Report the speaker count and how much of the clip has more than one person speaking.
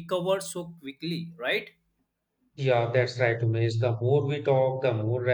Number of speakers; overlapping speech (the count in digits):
2, no overlap